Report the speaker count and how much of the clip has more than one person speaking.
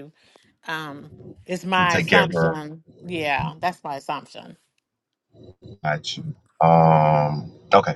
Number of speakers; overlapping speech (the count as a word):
two, about 10%